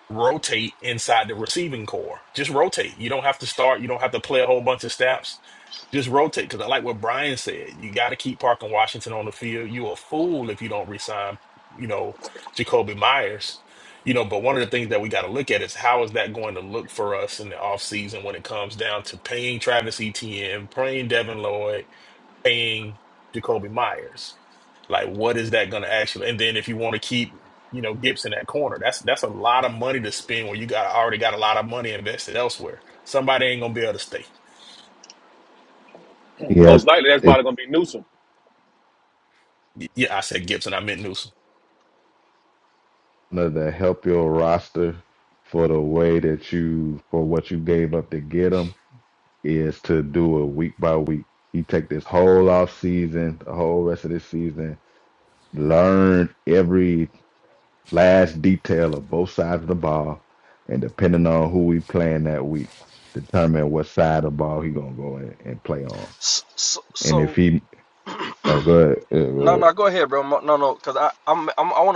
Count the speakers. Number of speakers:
four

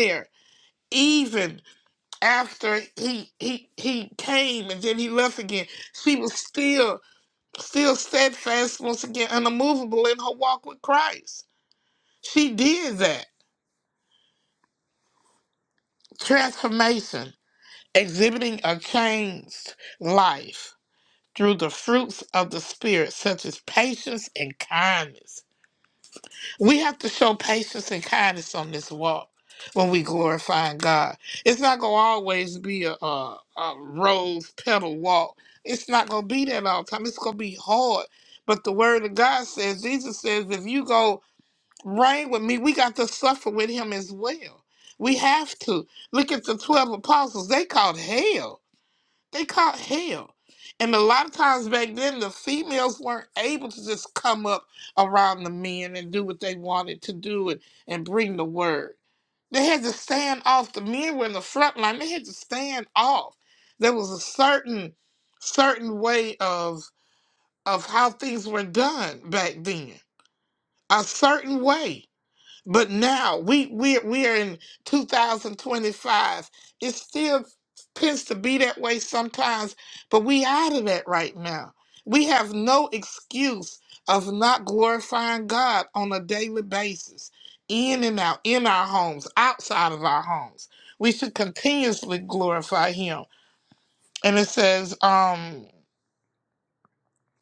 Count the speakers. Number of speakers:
one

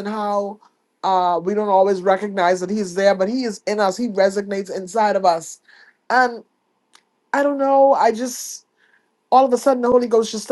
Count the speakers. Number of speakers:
one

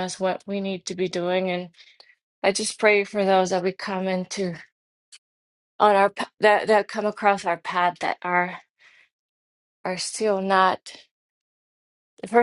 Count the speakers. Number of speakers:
one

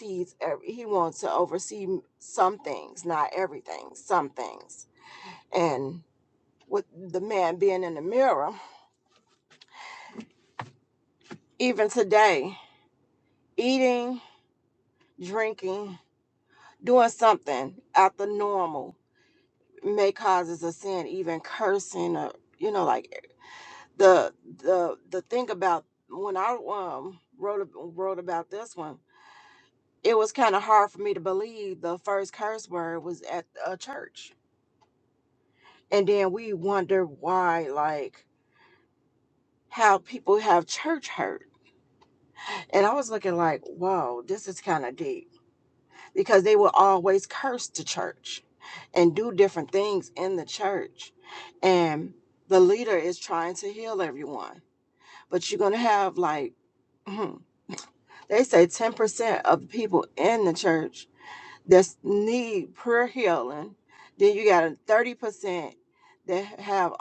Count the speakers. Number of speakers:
one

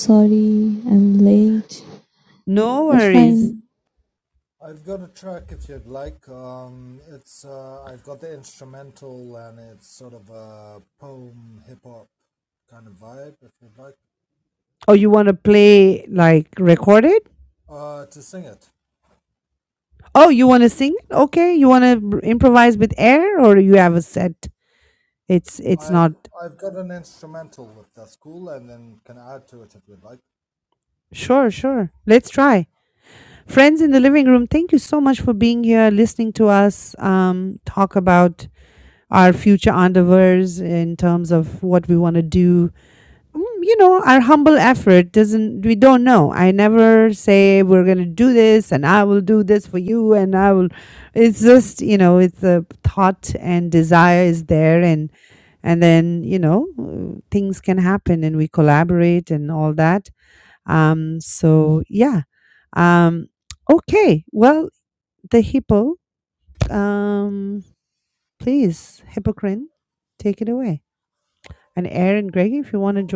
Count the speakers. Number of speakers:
three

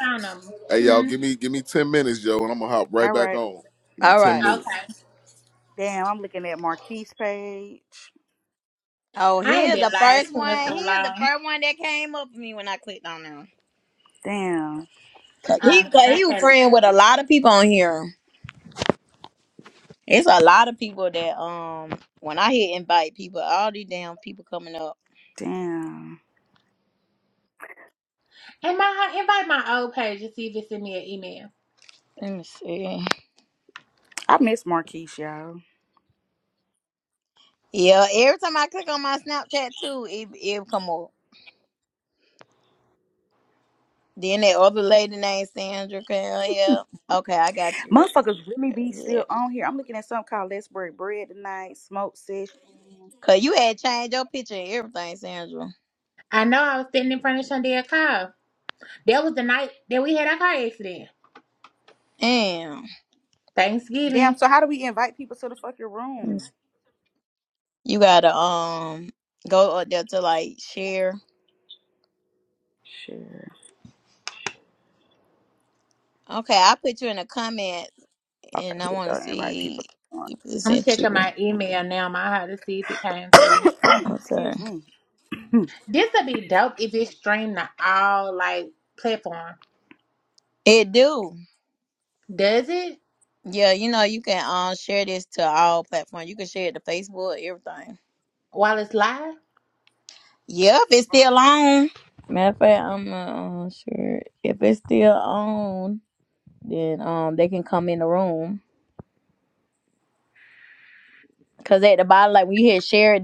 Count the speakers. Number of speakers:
four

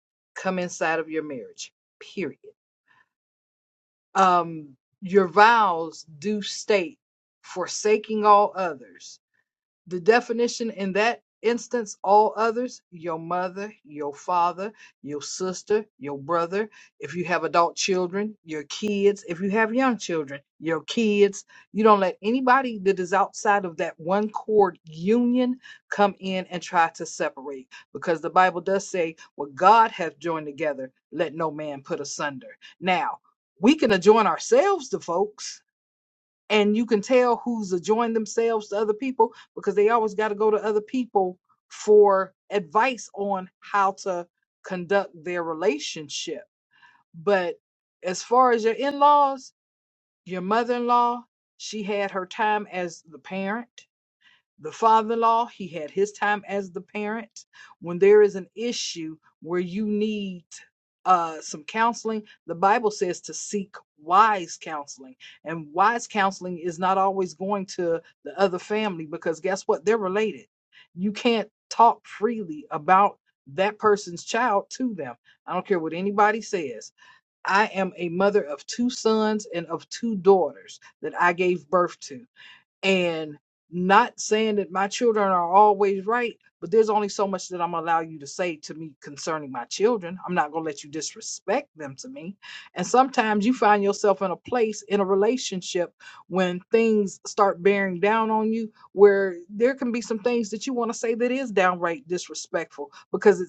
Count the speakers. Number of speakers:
one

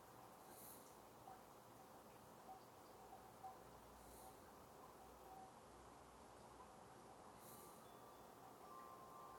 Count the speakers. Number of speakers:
zero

